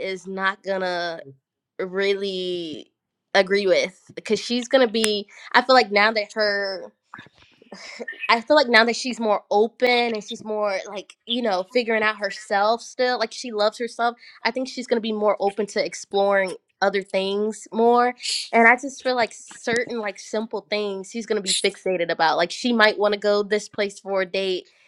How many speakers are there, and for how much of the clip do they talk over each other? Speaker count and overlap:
one, no overlap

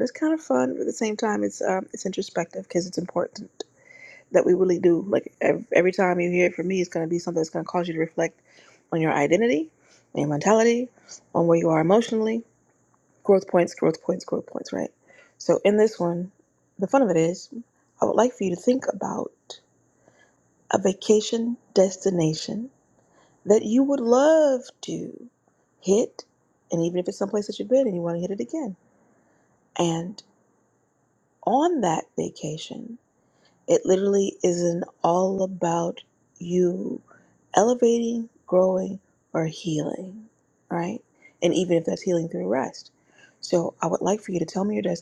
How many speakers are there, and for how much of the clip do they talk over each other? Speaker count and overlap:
one, no overlap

